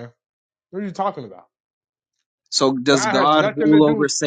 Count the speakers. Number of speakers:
two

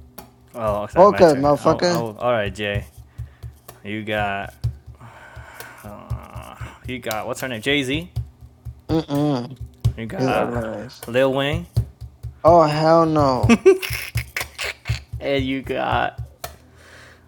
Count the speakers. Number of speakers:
two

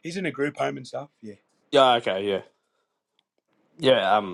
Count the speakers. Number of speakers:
two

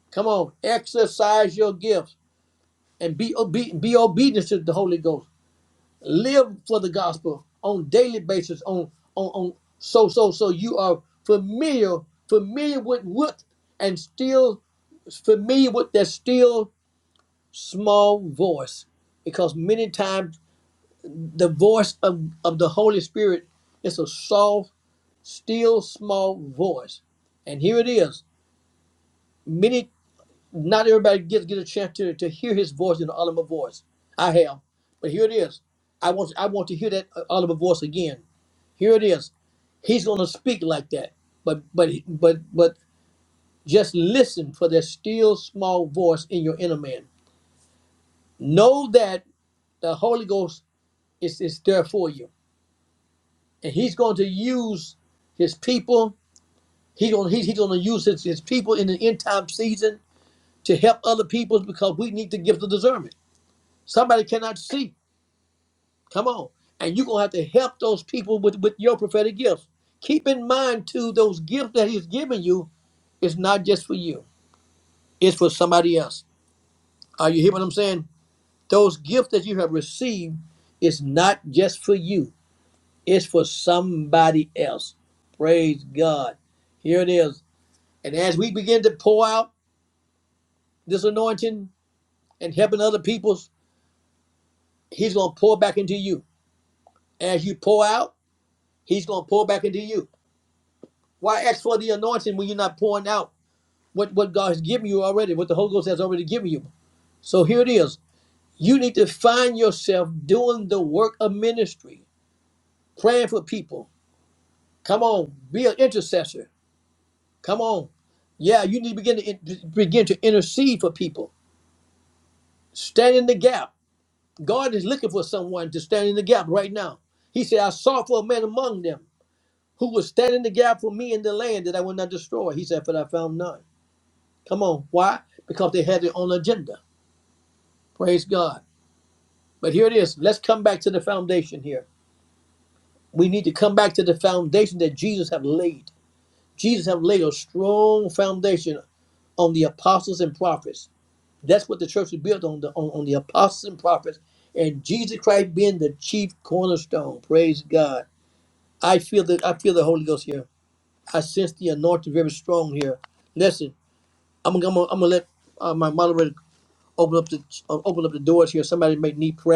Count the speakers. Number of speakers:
one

